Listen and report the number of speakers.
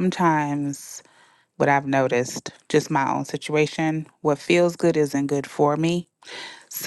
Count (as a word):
one